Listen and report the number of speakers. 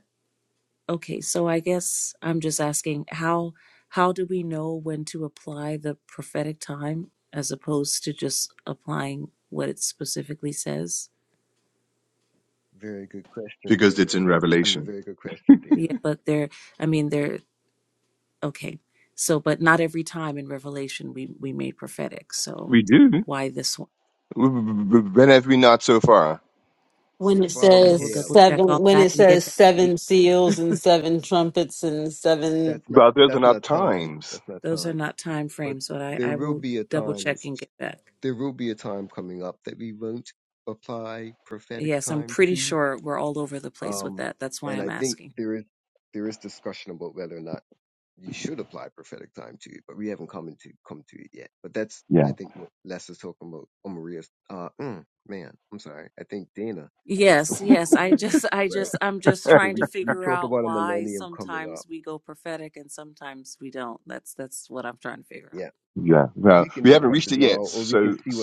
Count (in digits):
4